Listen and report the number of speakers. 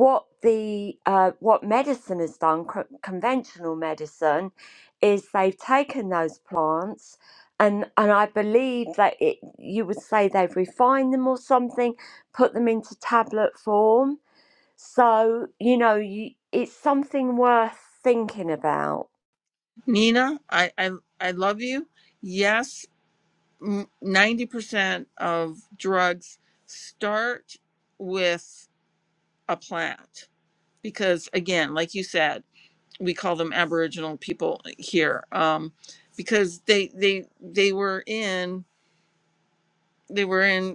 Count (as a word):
two